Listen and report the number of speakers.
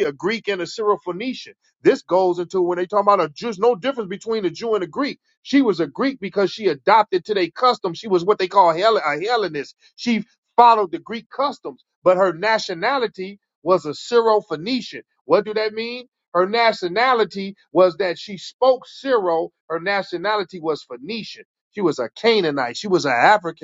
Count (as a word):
one